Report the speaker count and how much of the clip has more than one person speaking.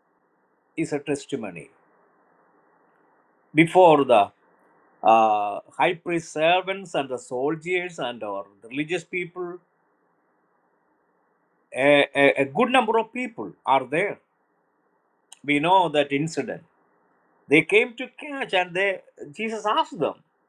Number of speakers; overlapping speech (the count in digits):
1, no overlap